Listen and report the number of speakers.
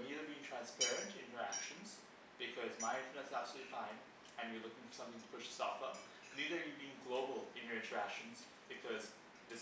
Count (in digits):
1